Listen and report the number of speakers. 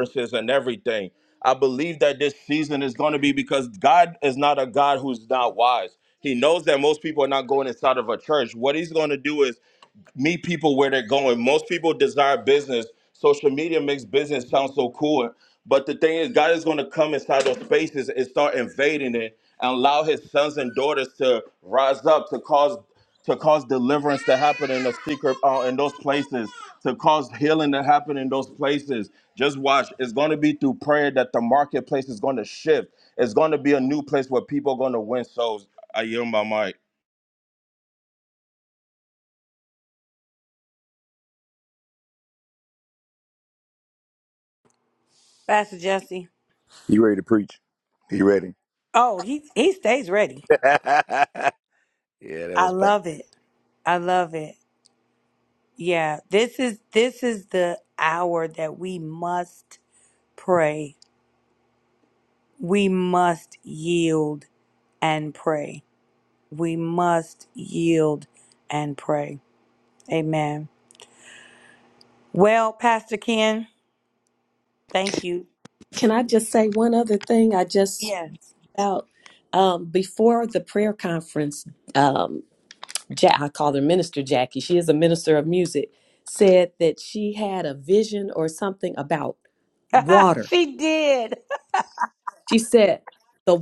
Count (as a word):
four